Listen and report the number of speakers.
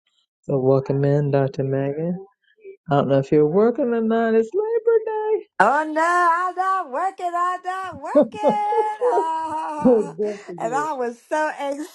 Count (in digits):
2